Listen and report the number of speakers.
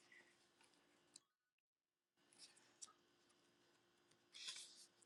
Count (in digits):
0